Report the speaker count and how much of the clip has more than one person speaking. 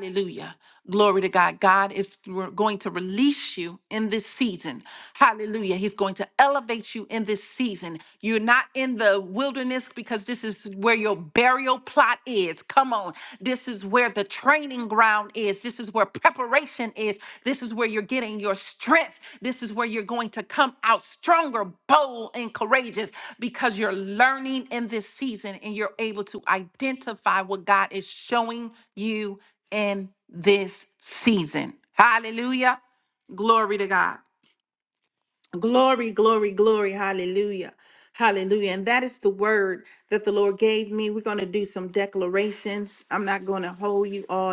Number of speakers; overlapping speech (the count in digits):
1, no overlap